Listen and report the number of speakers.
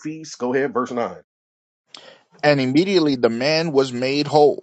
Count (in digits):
2